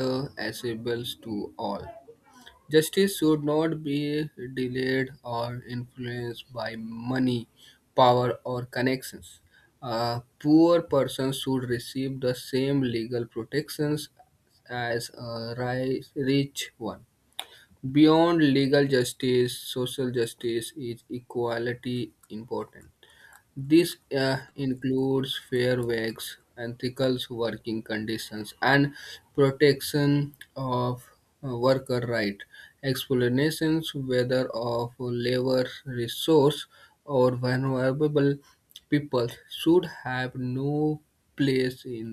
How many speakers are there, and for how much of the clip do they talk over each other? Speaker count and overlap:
one, no overlap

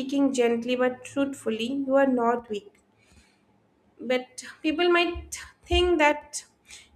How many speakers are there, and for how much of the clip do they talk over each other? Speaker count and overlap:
one, no overlap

